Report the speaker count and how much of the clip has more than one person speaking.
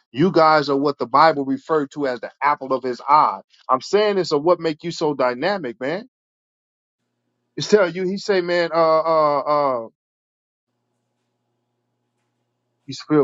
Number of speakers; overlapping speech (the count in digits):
1, no overlap